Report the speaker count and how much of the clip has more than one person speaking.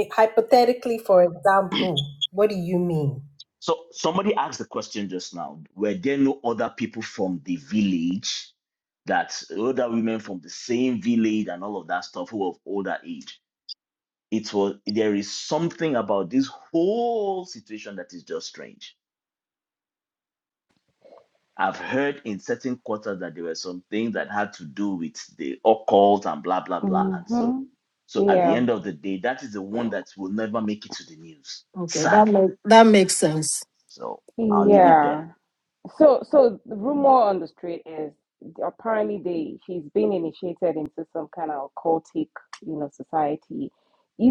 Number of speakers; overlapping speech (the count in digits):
4, about 6%